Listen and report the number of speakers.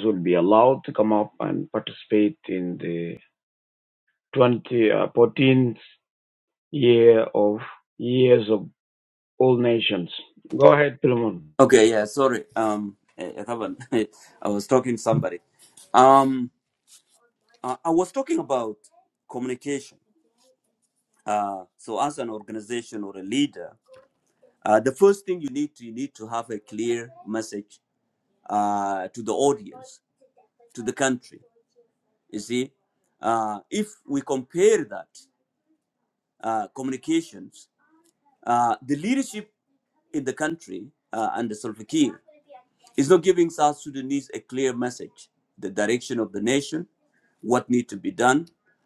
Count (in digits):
2